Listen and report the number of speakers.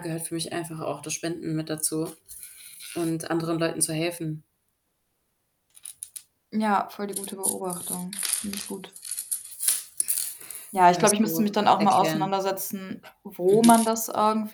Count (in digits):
2